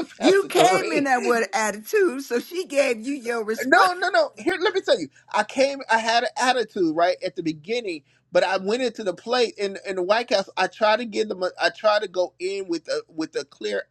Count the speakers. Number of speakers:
2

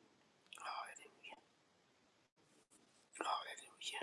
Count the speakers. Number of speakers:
0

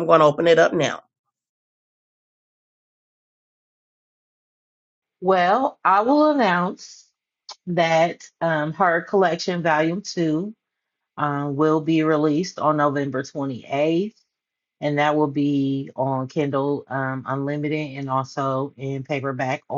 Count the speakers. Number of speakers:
2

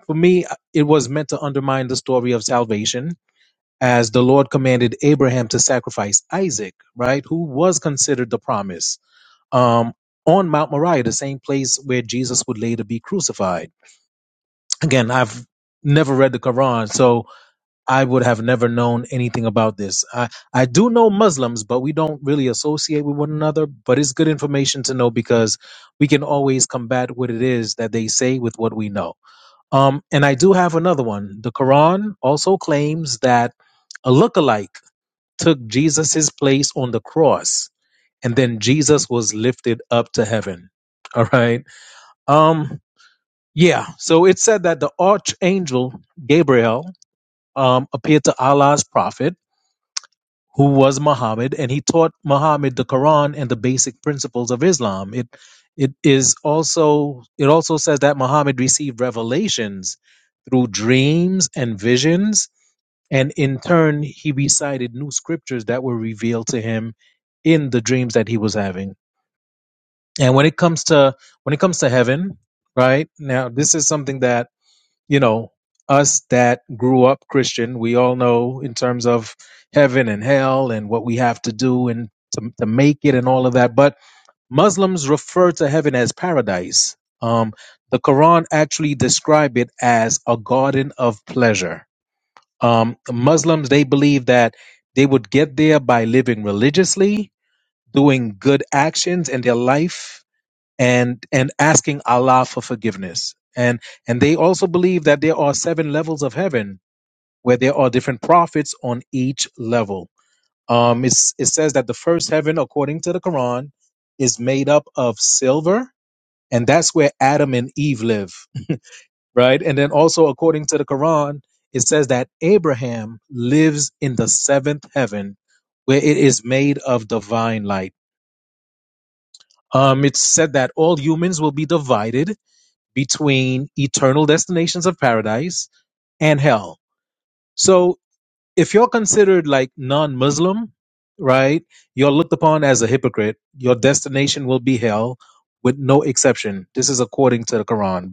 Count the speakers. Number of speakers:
1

